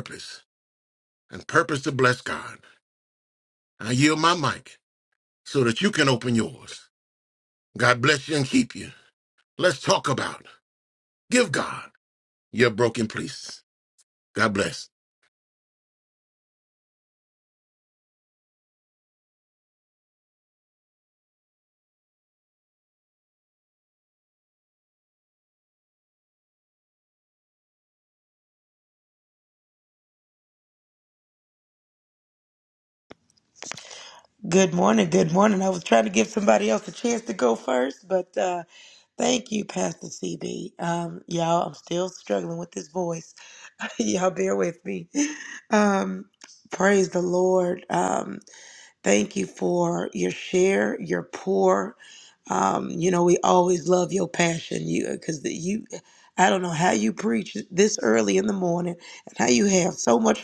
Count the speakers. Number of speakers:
2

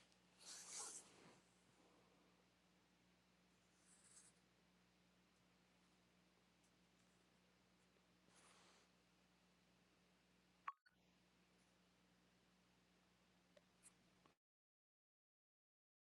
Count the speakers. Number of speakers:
0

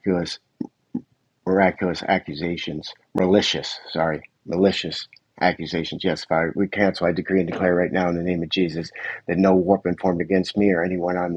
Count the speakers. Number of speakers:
1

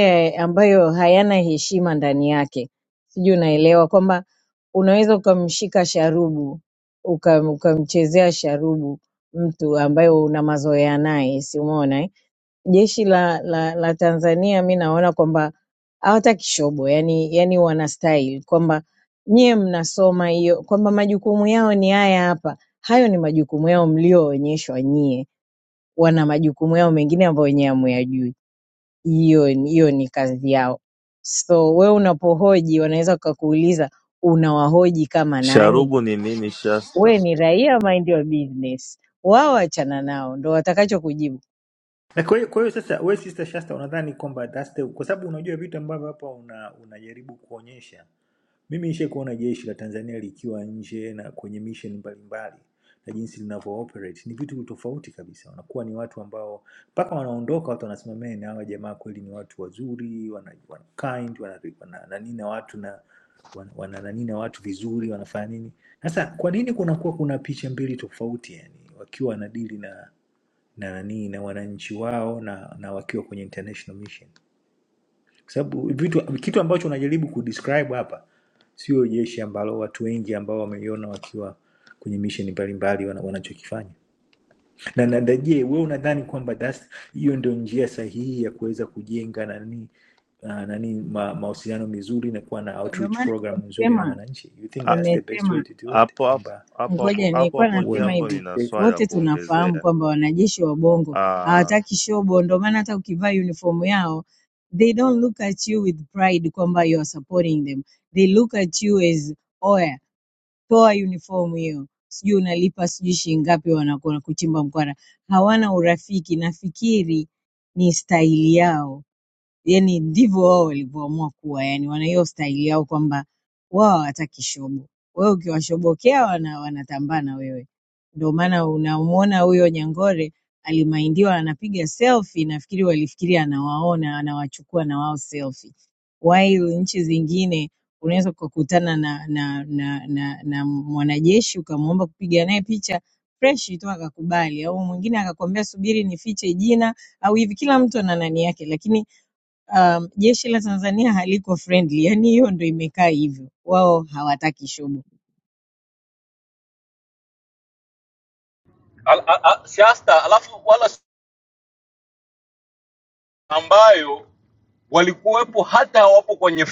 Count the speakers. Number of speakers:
4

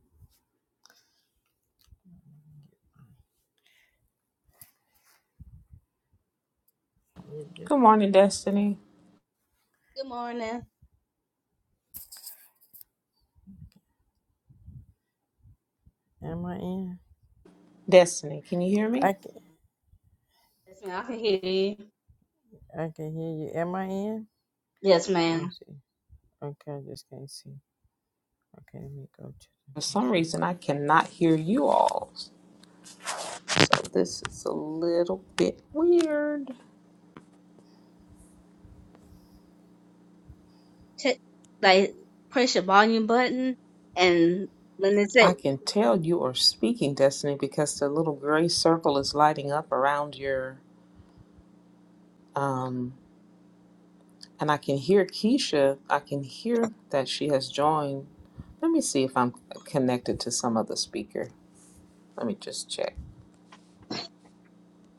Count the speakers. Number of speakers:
3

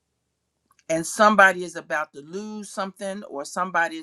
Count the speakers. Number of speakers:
1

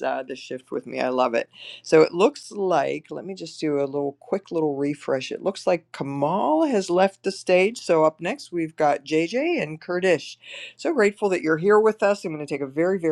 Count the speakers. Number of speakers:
1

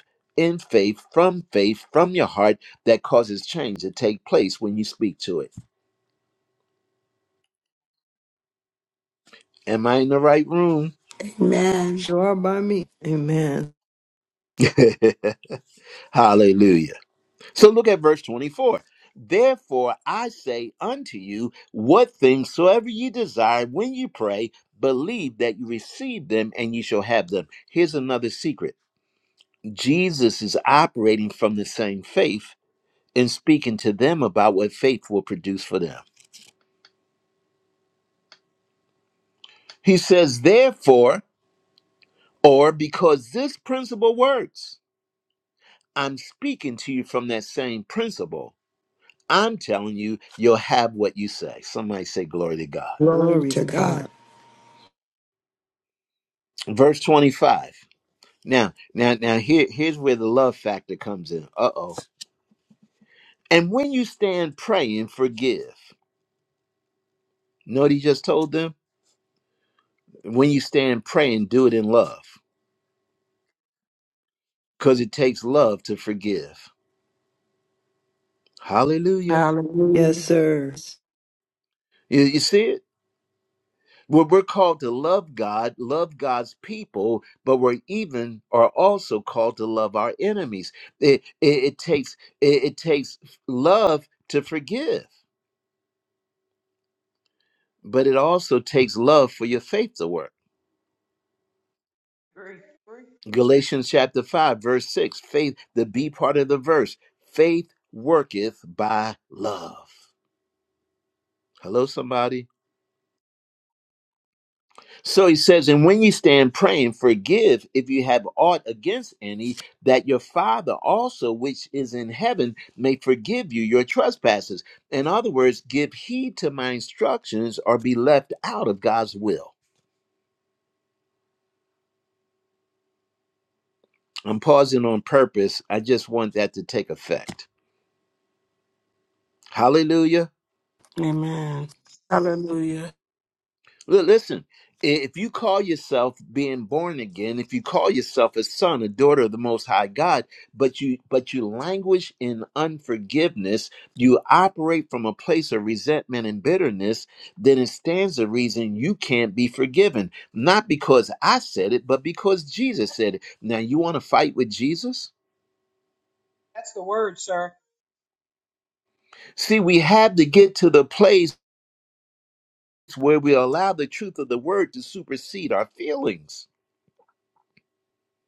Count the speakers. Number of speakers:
5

